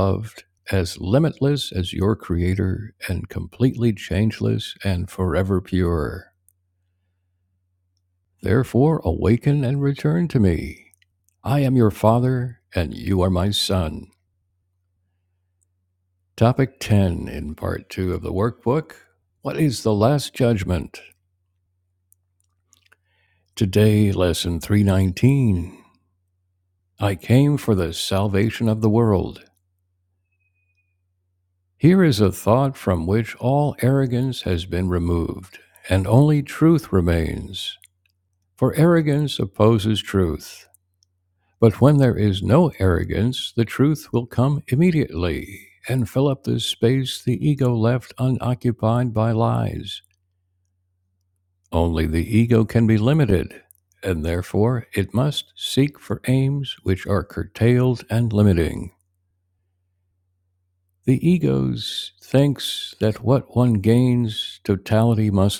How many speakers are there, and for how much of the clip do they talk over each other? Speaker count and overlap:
1, no overlap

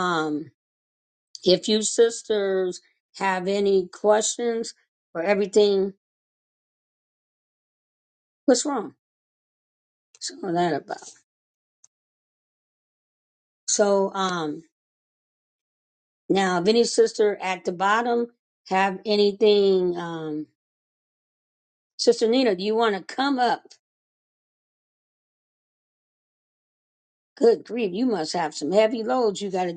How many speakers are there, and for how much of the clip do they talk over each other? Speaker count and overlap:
1, no overlap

